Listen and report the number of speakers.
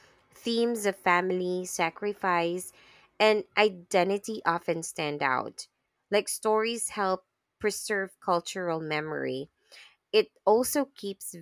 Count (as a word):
one